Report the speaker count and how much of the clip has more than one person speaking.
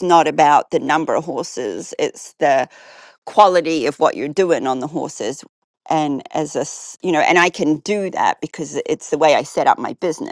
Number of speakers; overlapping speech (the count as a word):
one, no overlap